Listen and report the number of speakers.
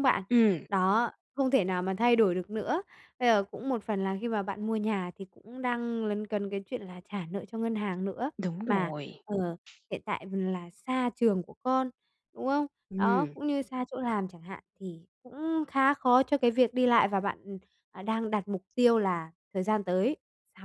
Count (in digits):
2